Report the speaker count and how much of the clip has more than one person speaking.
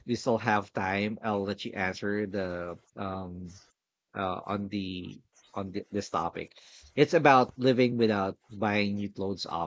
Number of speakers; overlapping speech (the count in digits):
1, no overlap